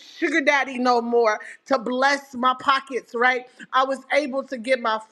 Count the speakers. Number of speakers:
one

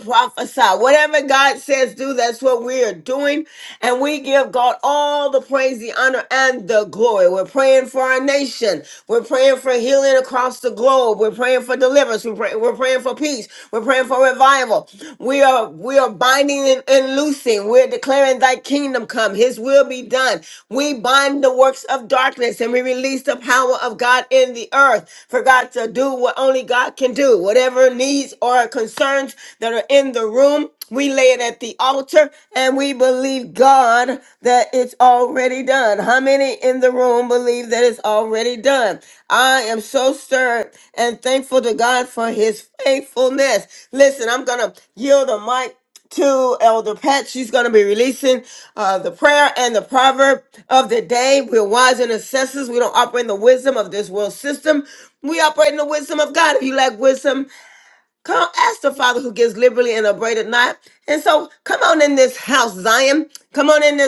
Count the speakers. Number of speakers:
one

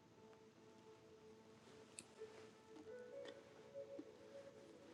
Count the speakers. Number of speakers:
zero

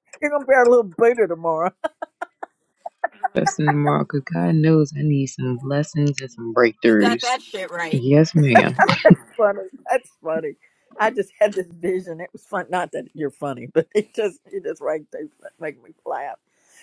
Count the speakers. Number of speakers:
three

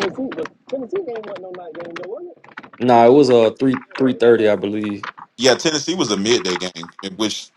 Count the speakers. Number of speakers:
three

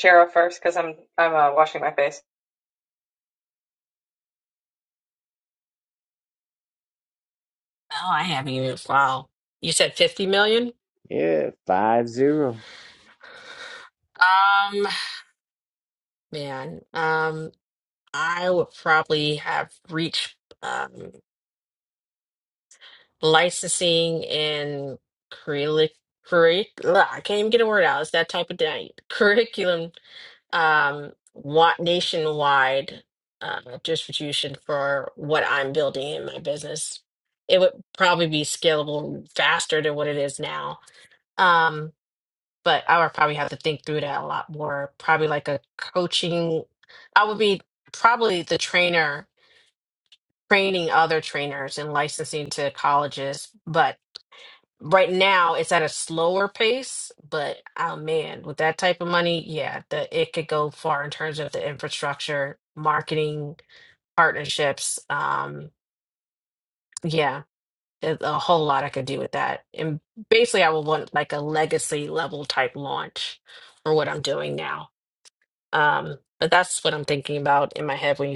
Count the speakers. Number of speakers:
three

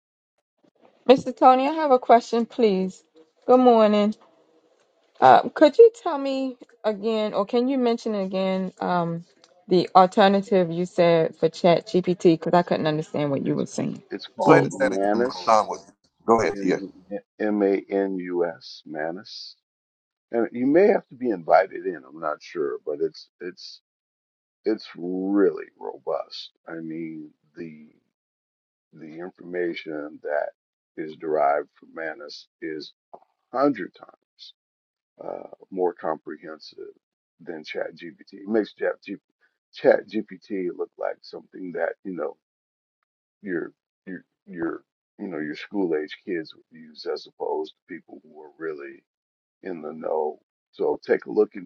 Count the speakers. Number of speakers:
three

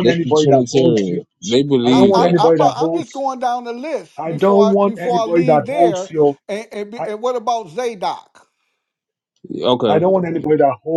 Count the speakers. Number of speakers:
three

